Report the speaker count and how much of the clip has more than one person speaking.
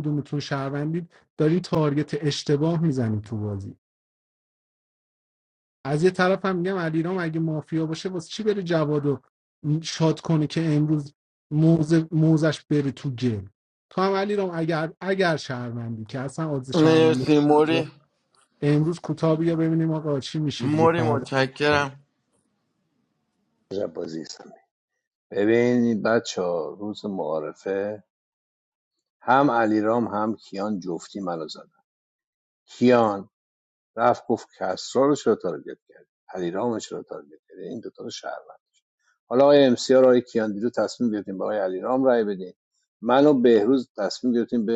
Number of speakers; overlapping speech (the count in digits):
3, about 3%